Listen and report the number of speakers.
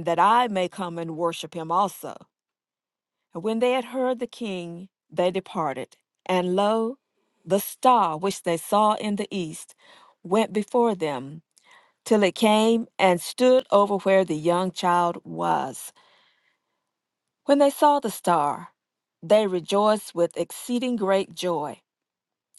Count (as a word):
one